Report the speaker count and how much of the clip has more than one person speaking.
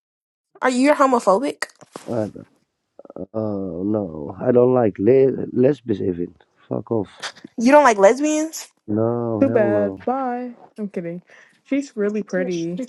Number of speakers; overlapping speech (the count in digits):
3, about 5%